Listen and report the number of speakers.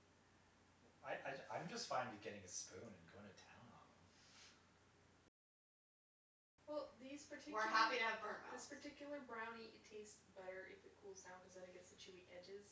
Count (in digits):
3